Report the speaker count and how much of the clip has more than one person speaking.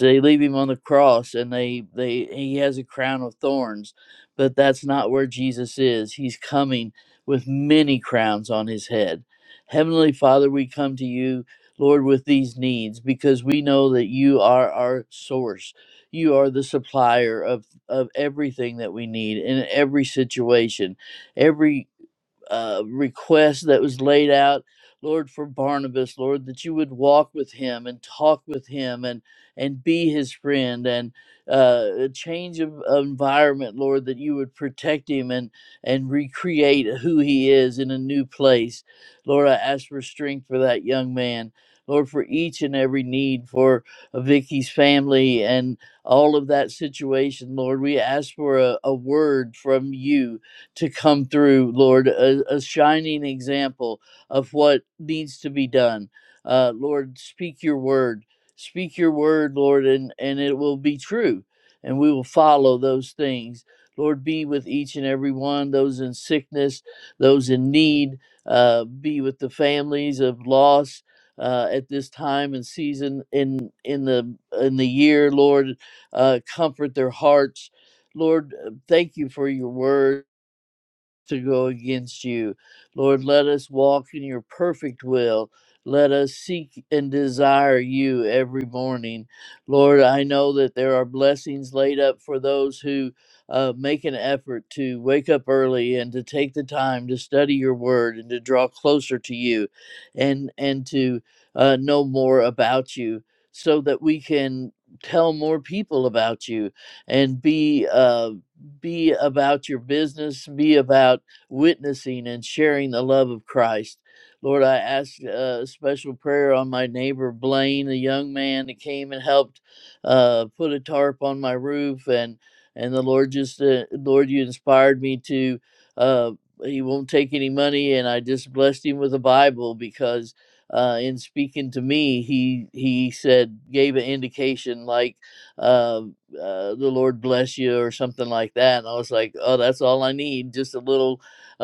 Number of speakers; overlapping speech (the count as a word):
one, no overlap